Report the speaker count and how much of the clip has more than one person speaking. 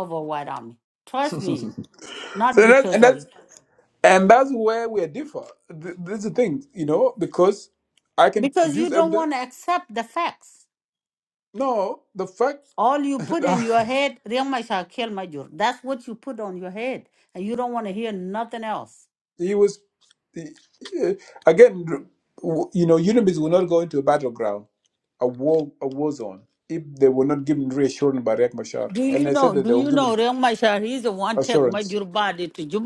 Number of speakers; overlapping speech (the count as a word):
two, about 9%